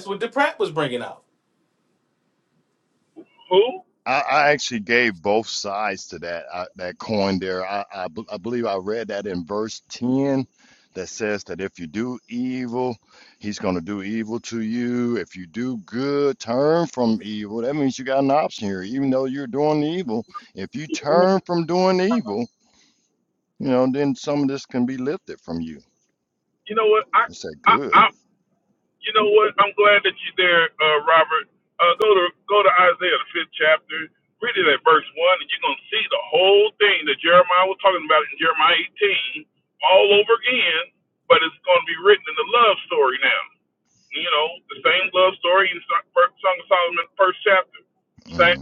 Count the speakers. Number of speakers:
three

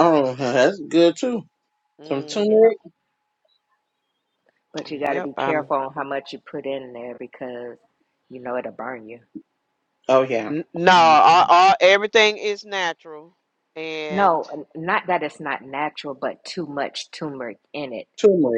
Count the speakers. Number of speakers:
three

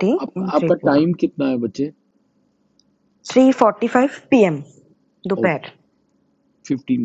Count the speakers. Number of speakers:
two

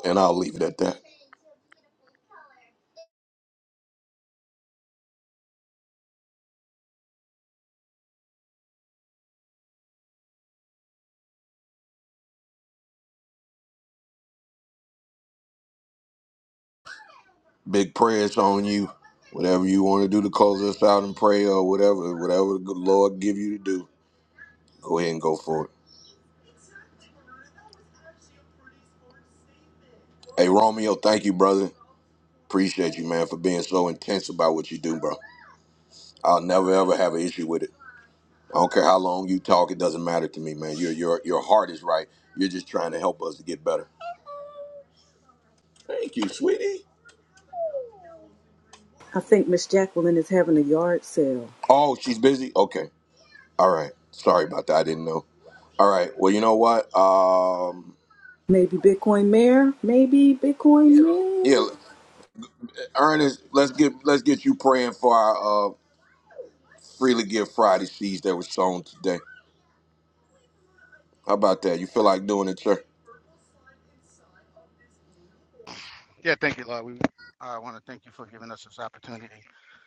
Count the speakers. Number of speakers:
three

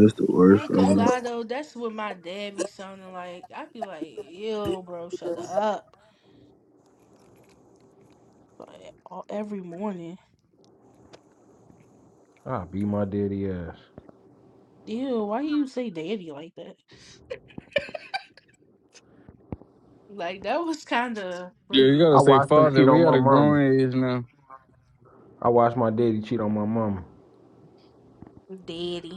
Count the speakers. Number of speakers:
four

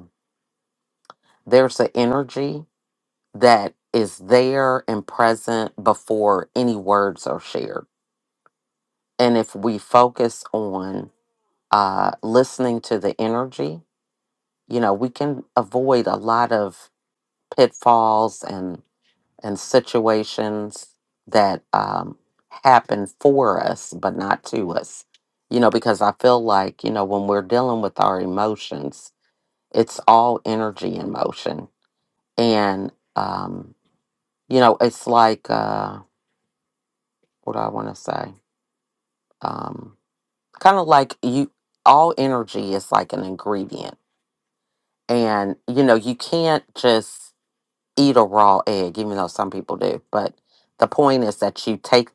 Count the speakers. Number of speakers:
one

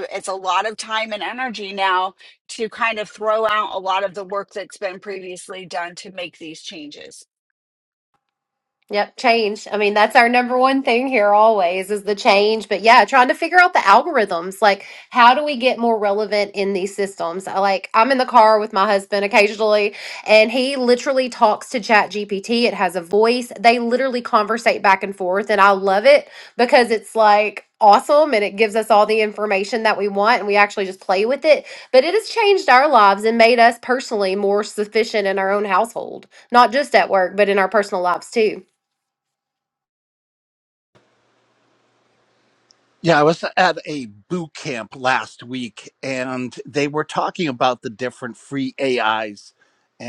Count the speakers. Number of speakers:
three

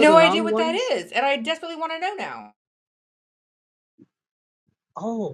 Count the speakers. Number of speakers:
two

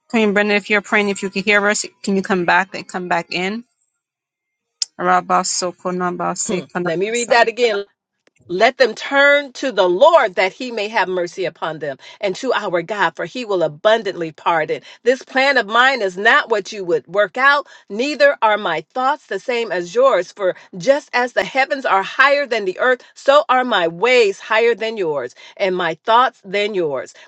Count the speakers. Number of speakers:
two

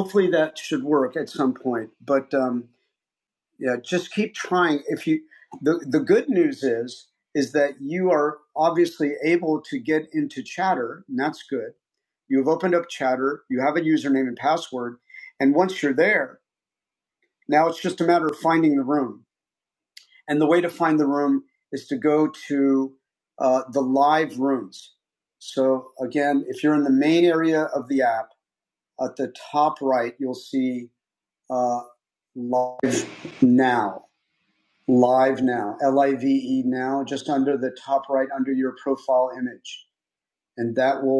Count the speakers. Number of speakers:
one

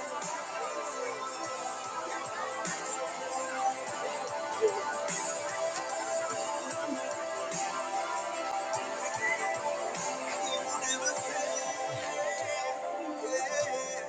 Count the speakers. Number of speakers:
zero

